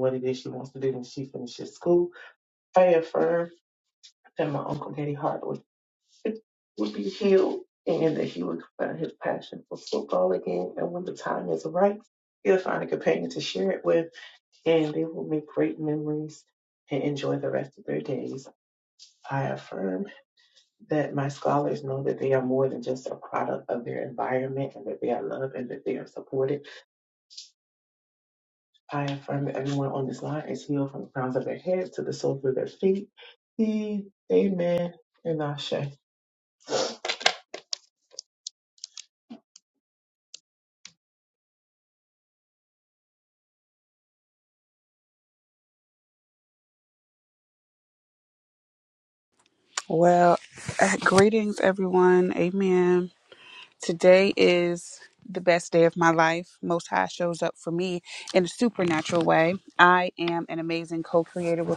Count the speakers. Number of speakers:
two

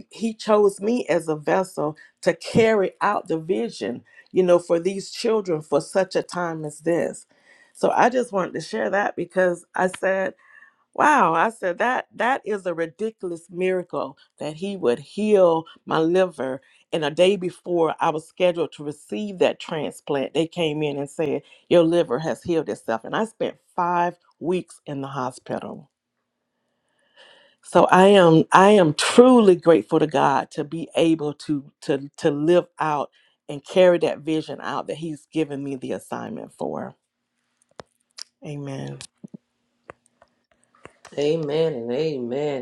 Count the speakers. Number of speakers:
two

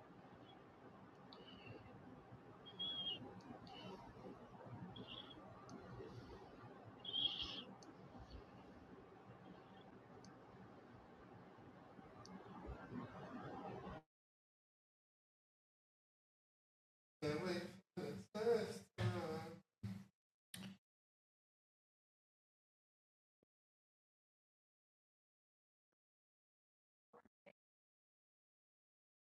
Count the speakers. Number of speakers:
zero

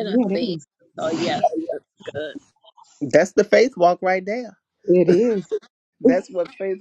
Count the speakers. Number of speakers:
three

